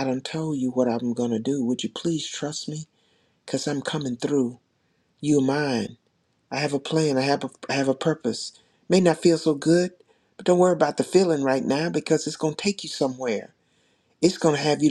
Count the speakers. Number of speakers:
one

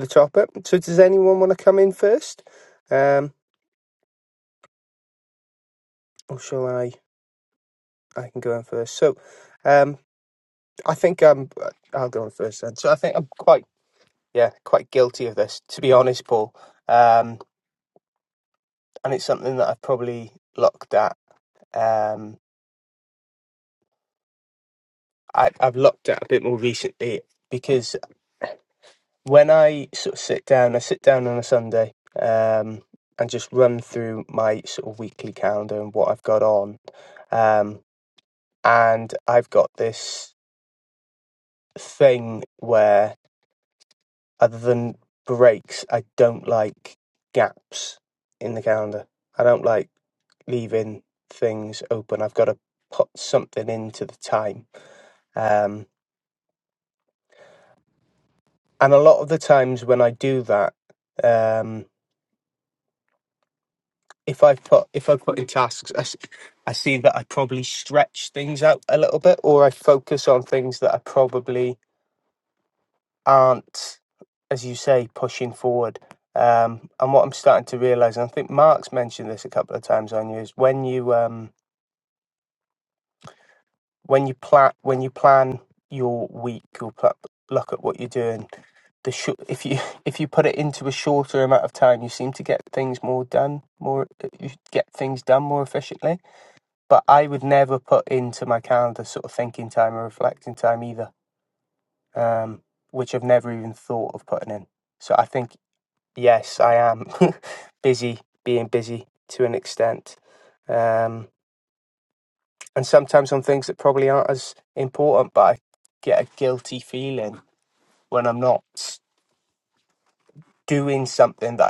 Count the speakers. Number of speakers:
one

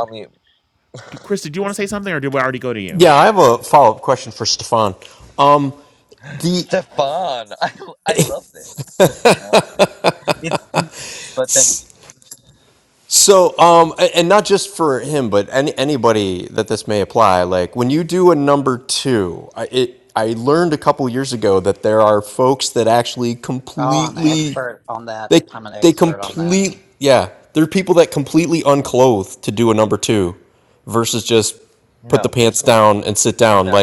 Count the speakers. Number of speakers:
four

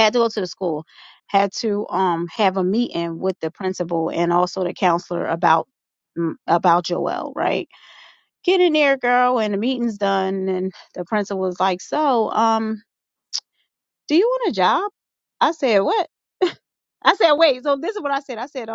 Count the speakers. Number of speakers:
one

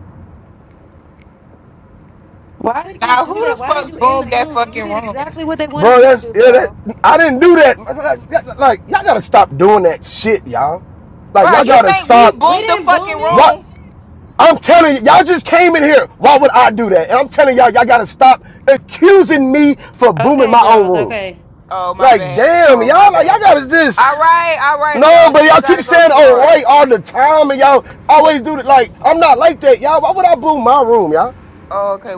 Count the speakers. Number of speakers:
three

